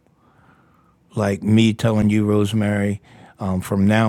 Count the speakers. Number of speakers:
one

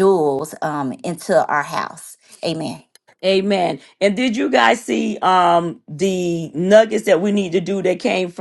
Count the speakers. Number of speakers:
two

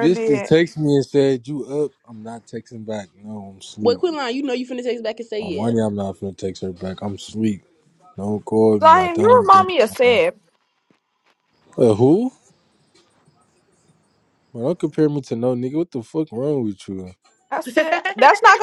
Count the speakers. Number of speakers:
three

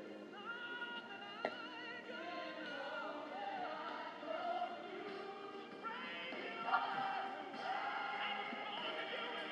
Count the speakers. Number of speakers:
zero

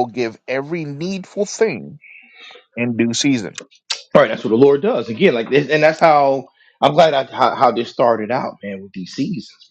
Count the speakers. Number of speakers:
two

